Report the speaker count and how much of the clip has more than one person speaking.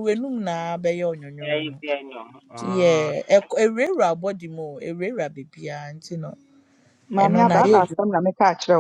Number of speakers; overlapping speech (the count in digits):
3, about 15%